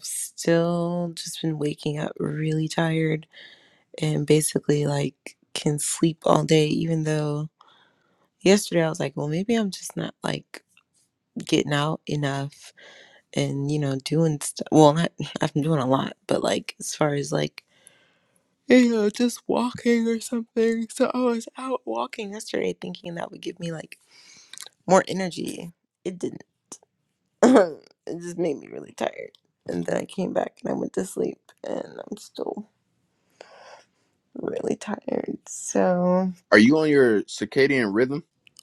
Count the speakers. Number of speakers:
2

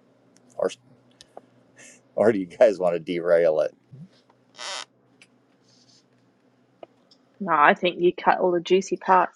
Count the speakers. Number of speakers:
2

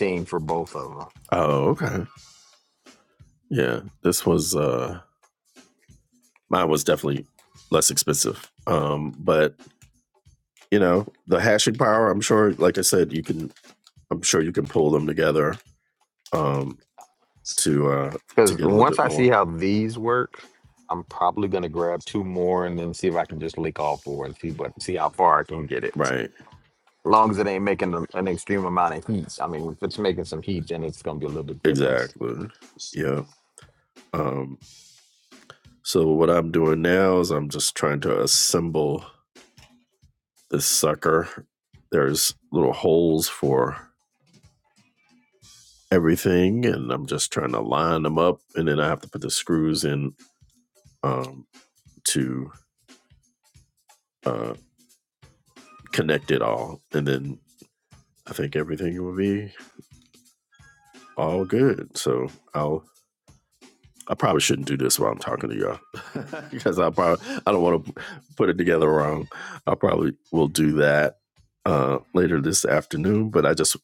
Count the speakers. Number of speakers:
2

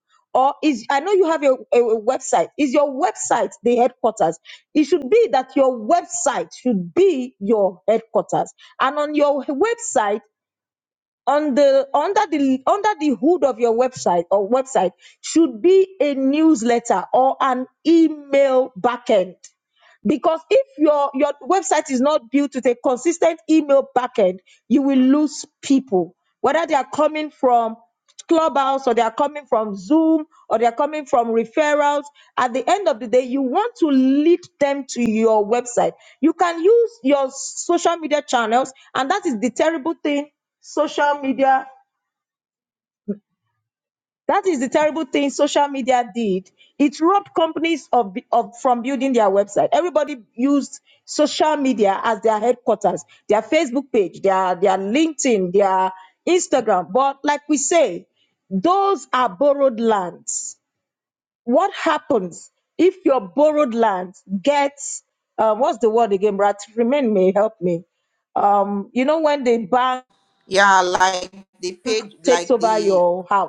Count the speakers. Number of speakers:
2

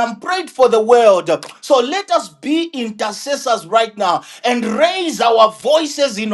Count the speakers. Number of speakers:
1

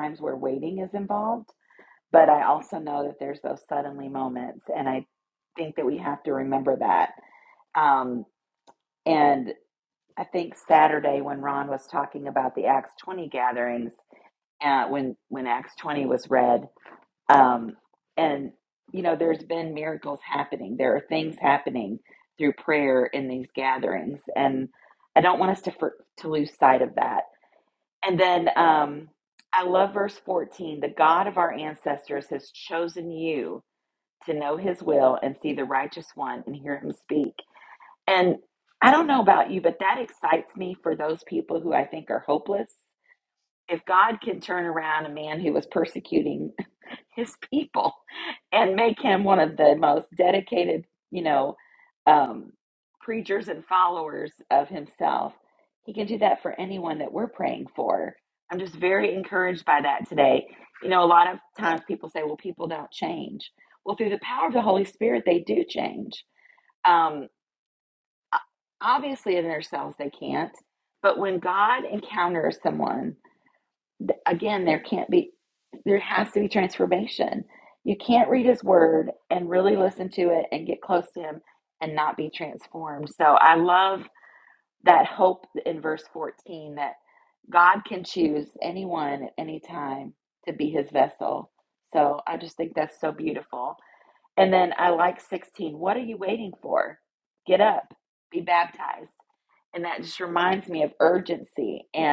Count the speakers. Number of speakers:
1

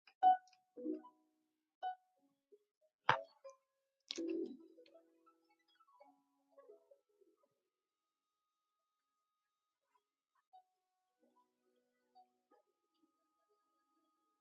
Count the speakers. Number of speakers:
0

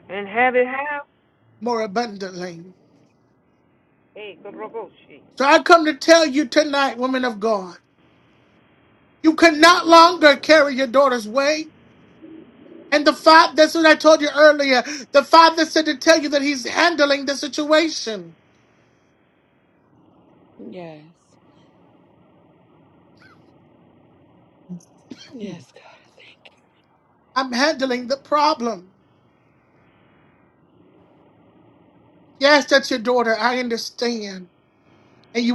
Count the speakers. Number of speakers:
3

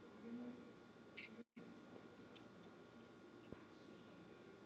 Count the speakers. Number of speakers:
0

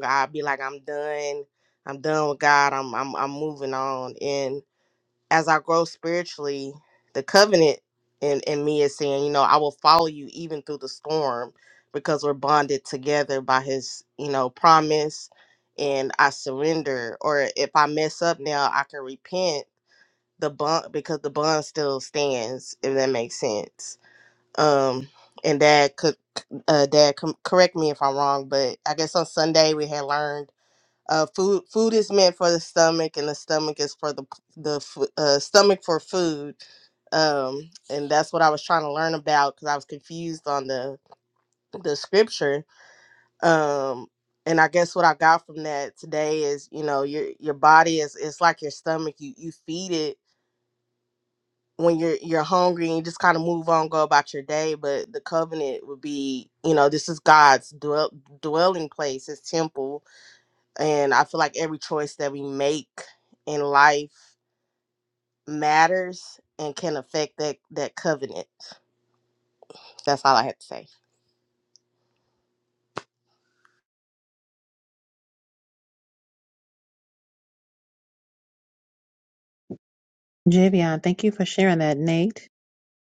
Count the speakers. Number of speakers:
2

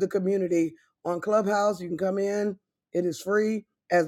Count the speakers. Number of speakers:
1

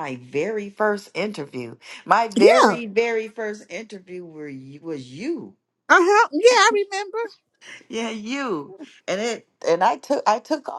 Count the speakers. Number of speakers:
2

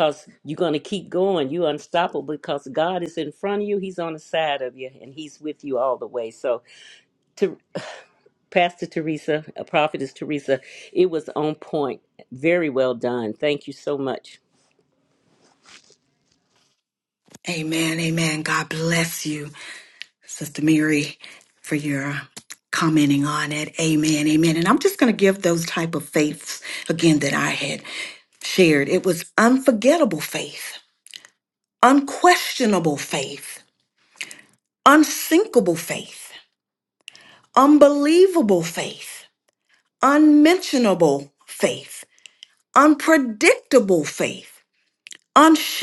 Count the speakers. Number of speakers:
2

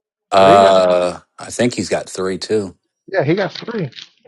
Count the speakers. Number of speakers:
2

